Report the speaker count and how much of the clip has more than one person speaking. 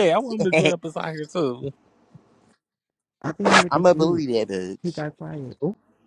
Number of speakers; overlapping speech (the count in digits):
3, about 22%